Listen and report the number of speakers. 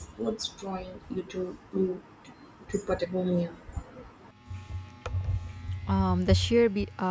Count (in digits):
2